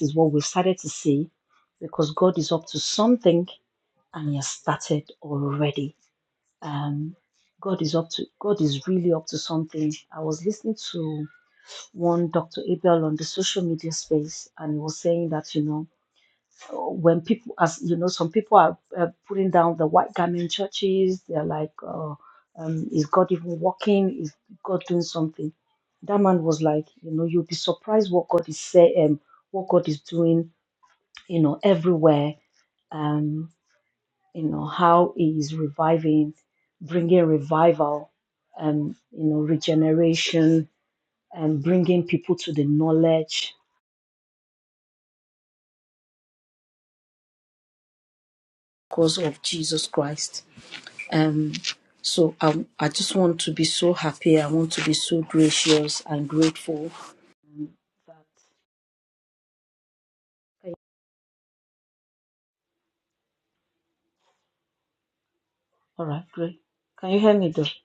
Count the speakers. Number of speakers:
one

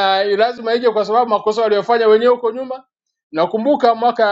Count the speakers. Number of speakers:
one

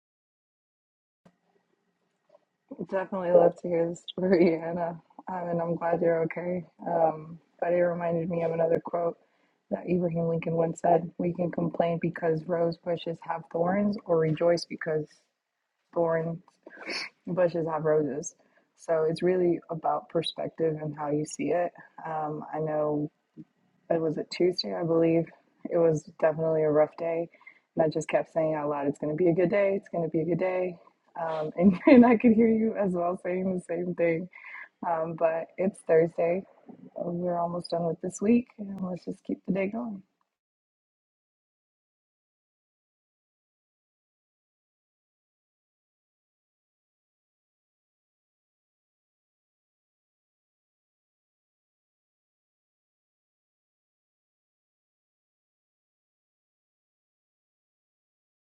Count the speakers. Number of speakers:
one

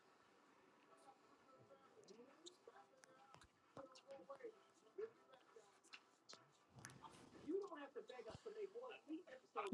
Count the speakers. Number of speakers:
zero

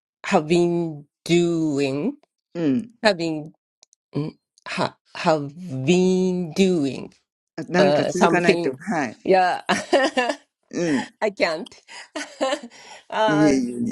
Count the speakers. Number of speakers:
two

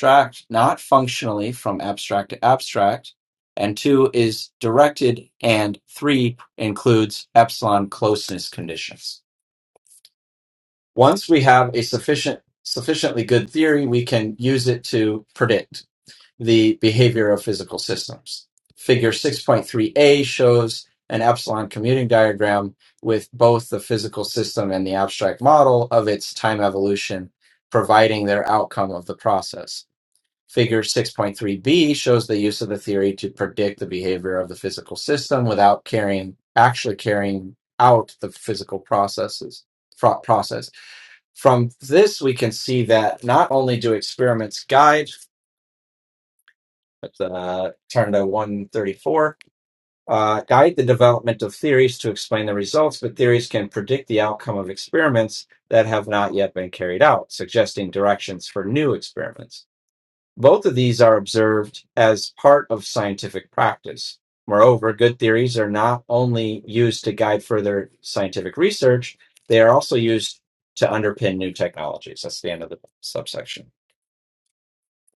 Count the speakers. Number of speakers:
one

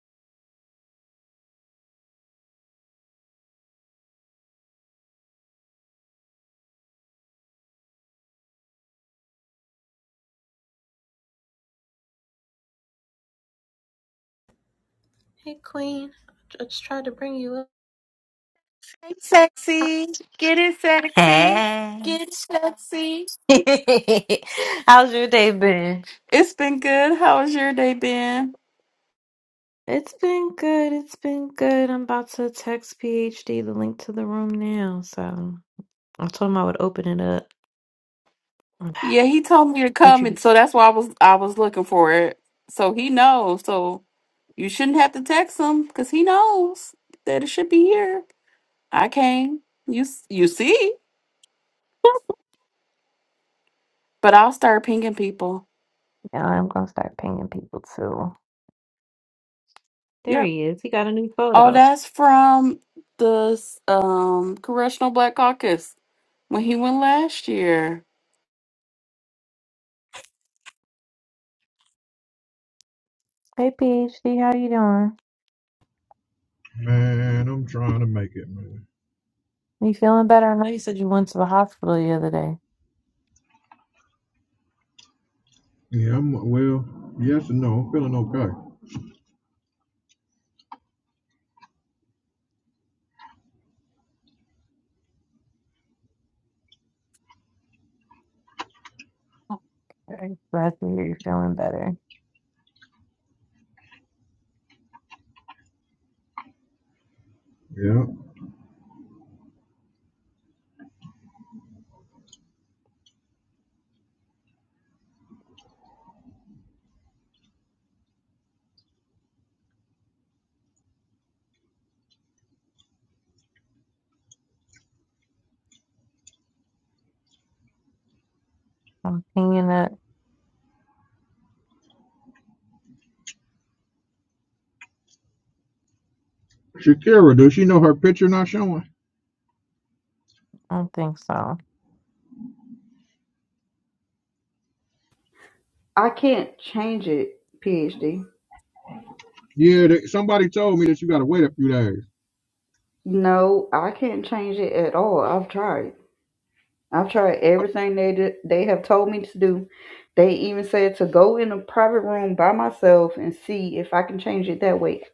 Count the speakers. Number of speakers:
four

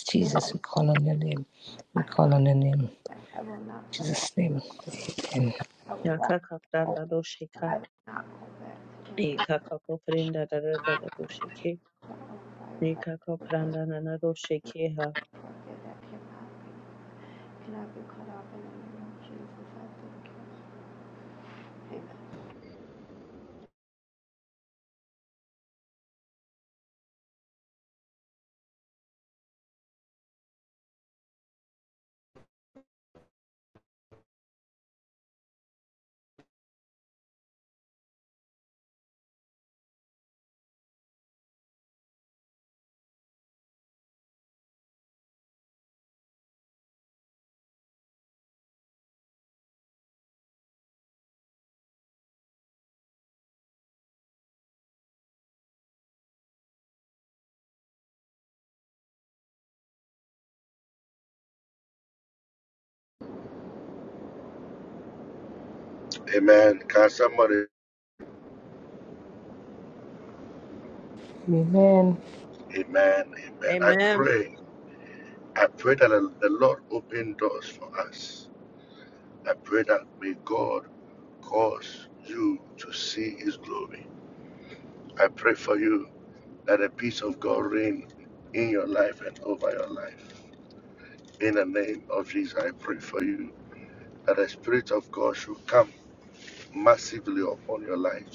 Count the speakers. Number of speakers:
four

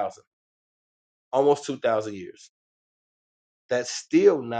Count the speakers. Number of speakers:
one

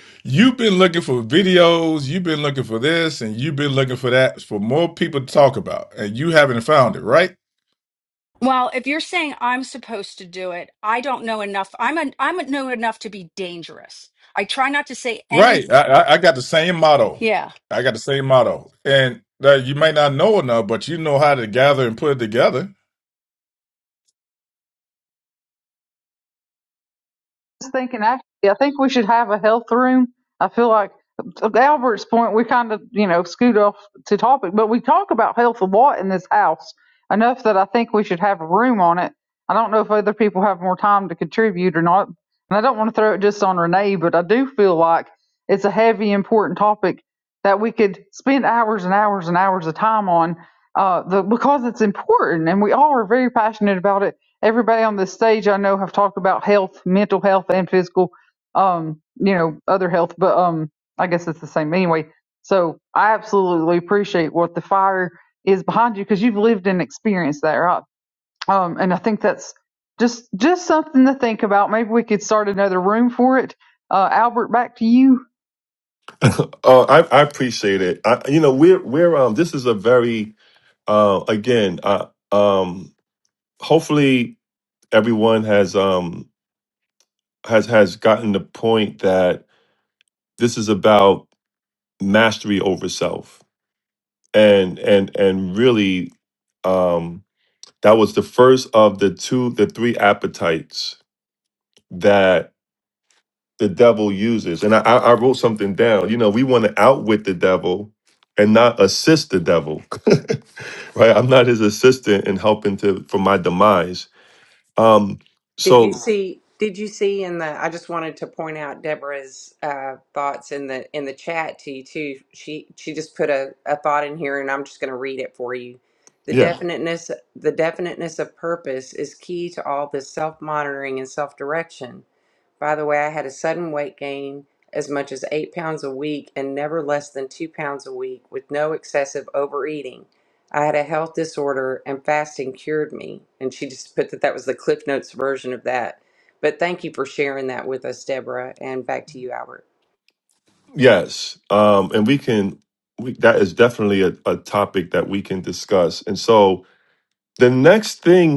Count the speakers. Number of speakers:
five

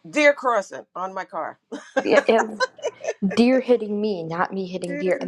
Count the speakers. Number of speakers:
two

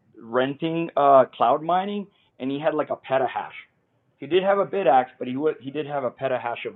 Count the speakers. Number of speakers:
one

